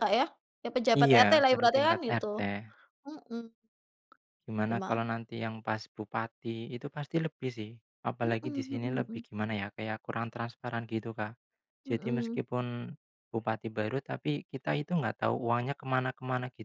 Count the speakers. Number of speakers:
two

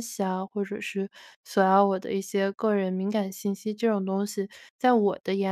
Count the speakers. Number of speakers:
one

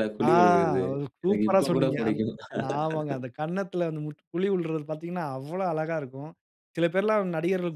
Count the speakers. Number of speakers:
two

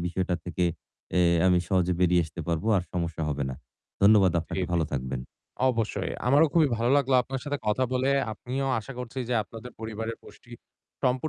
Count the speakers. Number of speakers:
two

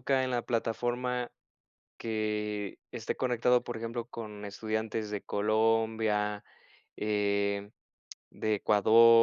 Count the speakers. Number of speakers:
one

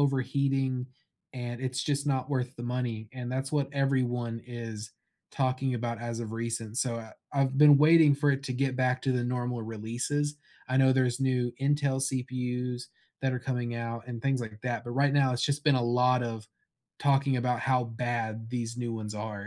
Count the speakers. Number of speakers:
one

